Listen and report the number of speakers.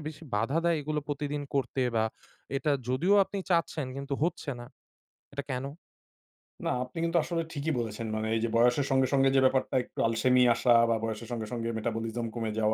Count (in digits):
2